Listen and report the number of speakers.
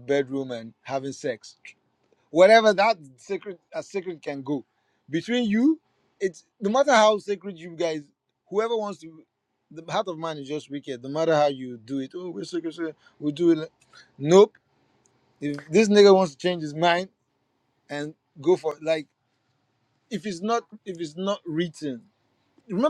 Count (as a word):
one